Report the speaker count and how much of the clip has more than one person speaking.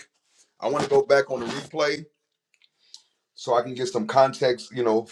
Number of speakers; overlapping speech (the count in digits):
1, no overlap